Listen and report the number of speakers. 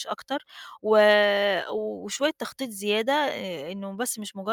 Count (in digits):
1